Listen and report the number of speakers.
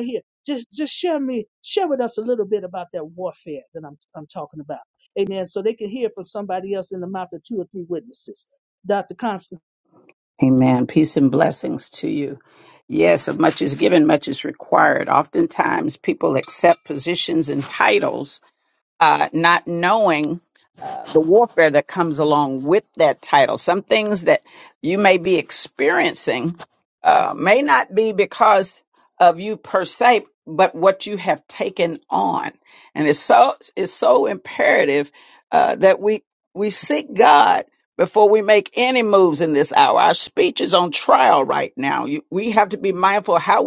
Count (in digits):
2